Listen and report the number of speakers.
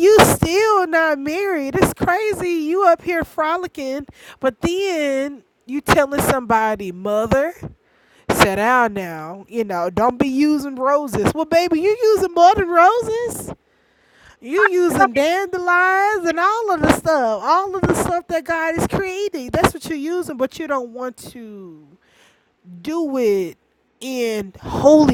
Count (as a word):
one